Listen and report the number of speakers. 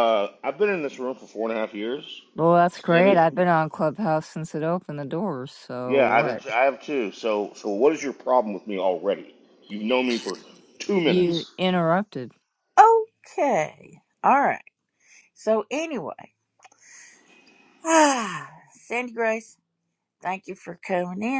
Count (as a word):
three